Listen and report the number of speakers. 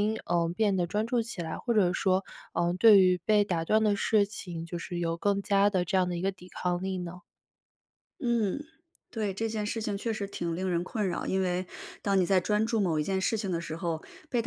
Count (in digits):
2